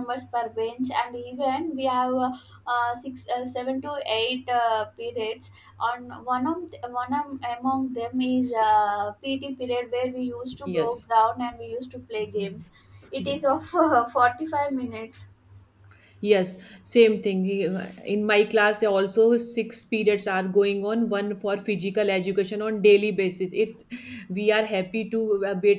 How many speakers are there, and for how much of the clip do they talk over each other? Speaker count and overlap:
two, about 2%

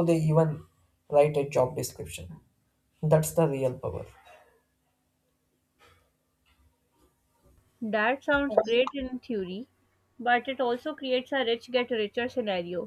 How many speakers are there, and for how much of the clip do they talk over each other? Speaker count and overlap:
two, no overlap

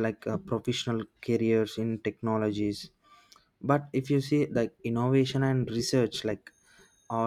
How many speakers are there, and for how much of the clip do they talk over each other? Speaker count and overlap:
one, no overlap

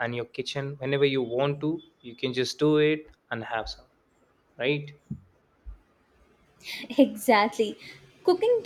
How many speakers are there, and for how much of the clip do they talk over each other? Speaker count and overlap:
two, no overlap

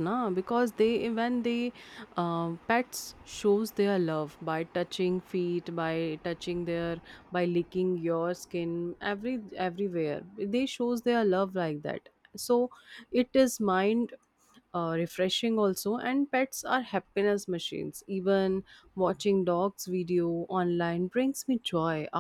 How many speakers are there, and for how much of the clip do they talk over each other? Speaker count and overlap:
one, no overlap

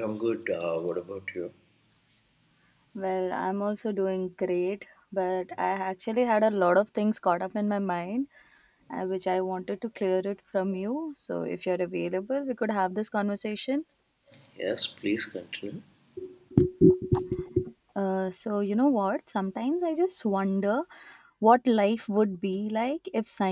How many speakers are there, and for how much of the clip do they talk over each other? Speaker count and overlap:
two, no overlap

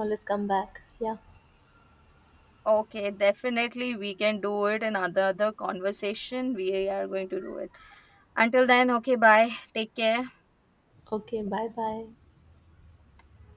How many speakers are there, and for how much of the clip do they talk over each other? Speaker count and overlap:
two, no overlap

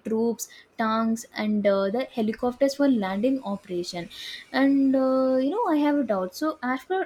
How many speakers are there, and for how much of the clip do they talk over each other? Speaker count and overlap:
one, no overlap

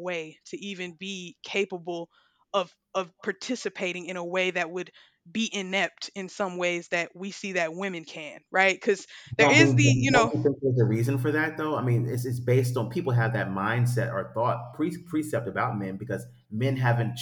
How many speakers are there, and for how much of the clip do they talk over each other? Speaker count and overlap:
two, about 3%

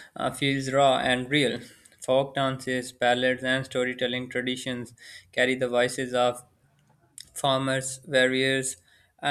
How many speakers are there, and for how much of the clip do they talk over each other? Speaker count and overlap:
one, no overlap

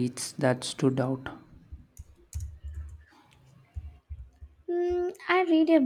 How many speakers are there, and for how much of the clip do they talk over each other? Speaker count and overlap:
two, no overlap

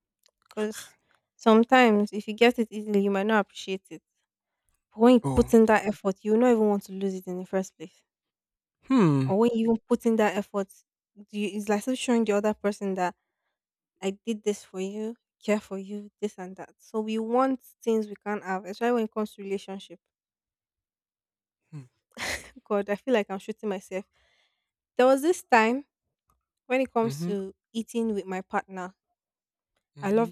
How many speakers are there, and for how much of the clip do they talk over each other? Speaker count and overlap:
two, about 3%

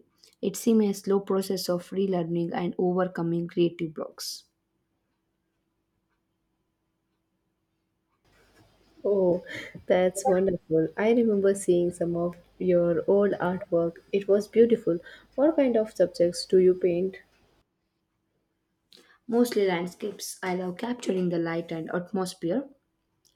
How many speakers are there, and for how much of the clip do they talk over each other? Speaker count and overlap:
two, no overlap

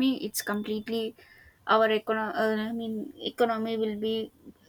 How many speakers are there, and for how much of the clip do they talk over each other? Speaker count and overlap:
one, no overlap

